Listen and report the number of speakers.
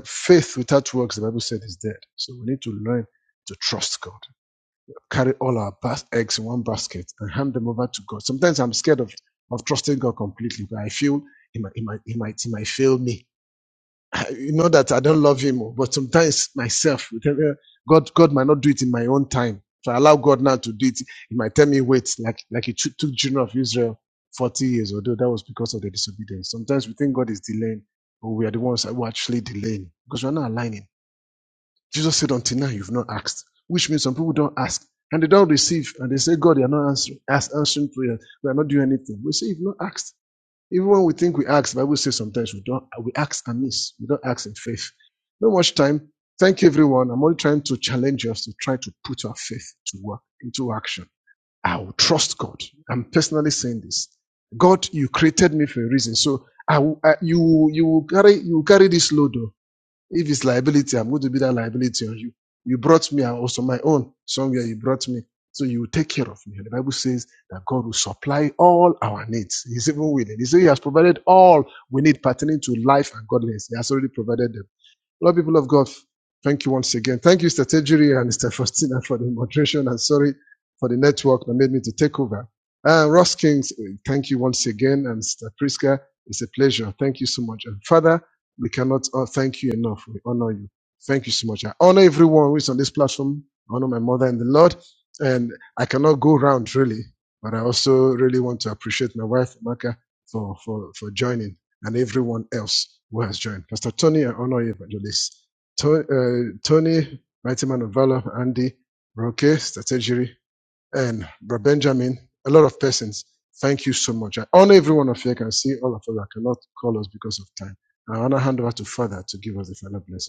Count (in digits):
1